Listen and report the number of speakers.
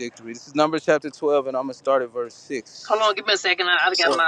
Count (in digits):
2